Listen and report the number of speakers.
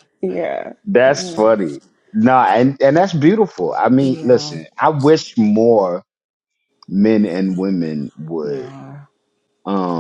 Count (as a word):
two